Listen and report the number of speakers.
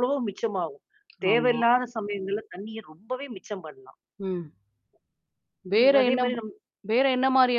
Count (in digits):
2